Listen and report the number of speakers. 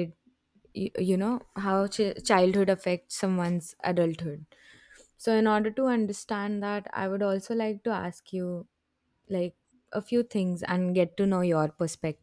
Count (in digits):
1